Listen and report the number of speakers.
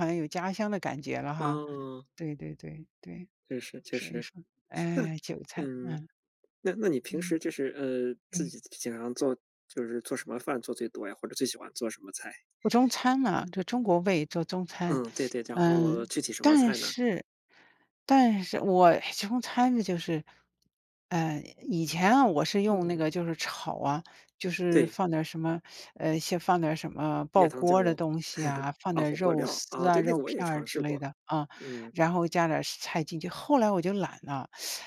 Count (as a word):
two